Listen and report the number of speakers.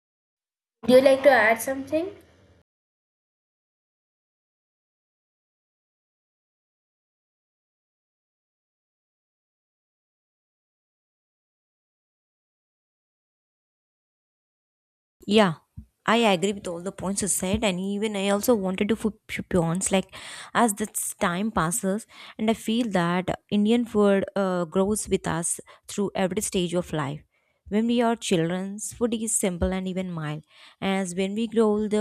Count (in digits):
2